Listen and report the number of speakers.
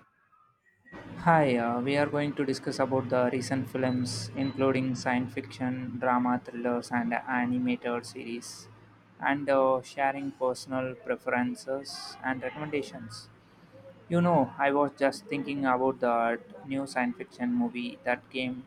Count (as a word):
one